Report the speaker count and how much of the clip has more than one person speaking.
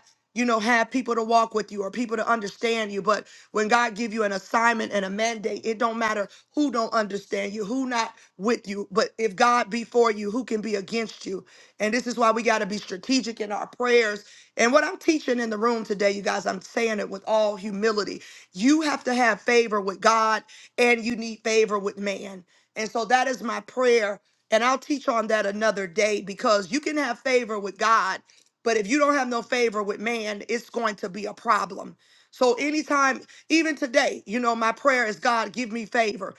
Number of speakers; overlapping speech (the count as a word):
one, no overlap